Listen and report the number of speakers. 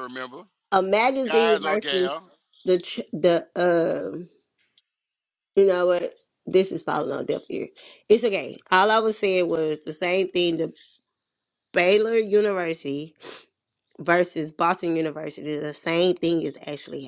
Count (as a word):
two